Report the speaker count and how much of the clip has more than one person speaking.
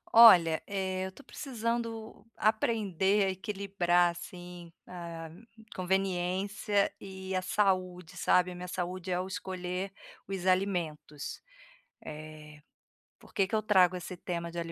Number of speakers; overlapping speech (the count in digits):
1, no overlap